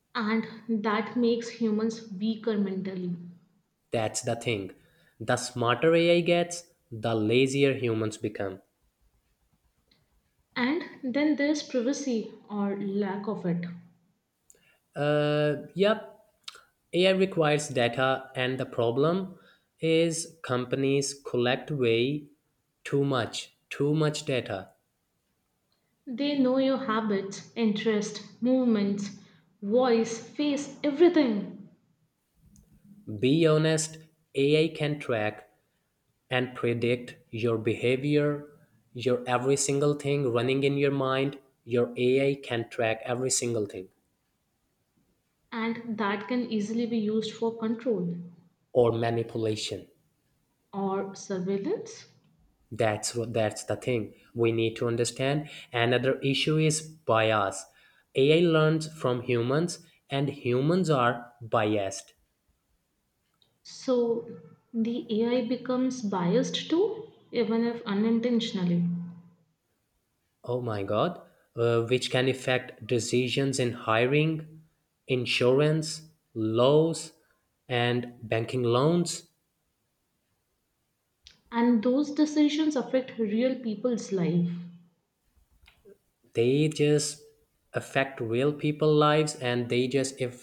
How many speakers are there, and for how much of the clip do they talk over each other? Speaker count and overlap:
two, no overlap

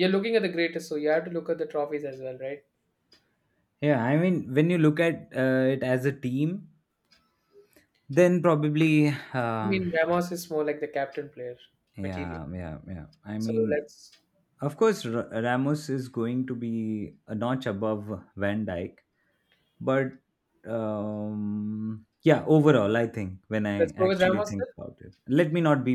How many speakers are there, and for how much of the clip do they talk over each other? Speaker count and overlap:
two, about 7%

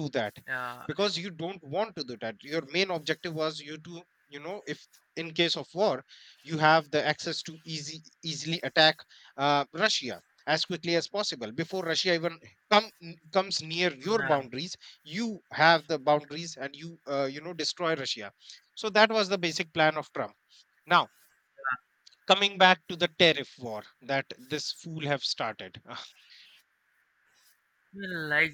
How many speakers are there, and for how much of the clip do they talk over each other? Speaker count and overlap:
two, about 1%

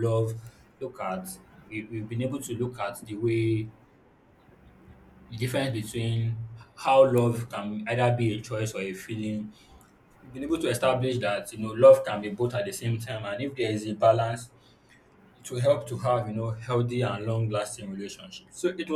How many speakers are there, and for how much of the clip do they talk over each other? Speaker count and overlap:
one, no overlap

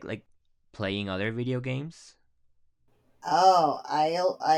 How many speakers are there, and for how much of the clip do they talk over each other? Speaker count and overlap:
two, no overlap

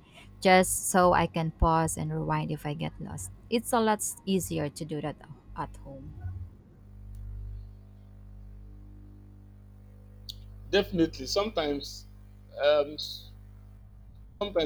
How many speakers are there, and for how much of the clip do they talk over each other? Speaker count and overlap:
two, no overlap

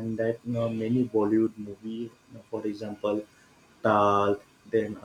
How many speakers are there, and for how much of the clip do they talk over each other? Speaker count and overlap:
one, no overlap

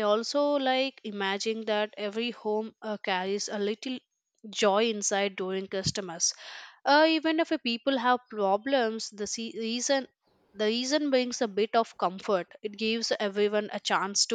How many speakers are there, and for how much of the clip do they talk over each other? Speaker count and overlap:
one, no overlap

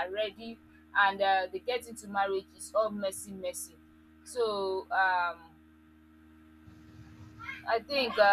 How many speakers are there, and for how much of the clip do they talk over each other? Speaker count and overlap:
one, no overlap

